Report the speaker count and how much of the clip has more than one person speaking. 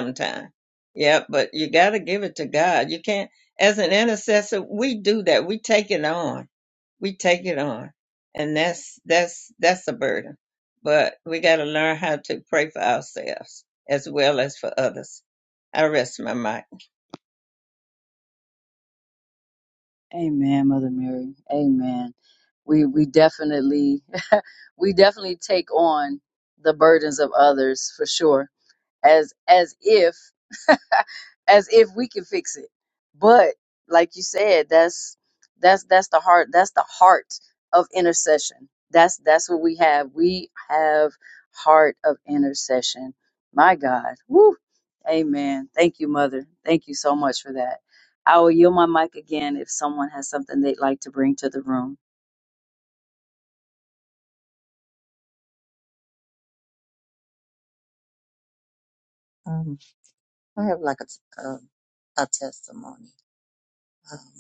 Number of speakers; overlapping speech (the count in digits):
3, no overlap